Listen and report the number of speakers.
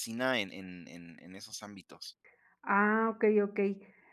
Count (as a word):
two